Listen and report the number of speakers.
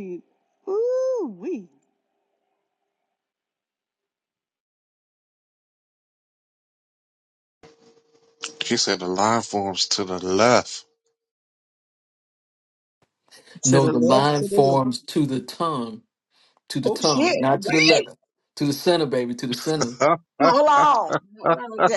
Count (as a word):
four